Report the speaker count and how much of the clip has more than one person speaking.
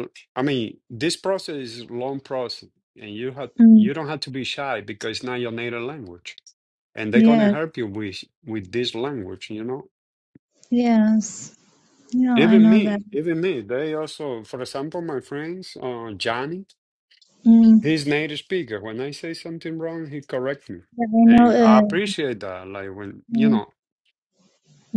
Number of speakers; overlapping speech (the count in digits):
2, about 9%